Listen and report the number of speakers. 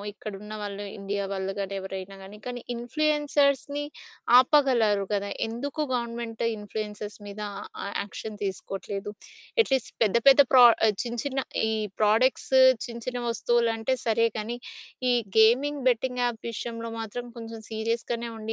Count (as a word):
one